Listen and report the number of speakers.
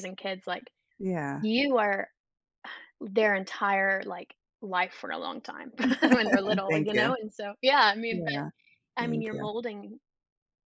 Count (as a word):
two